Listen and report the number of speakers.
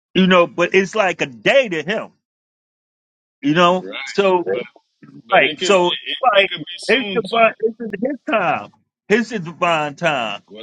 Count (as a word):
two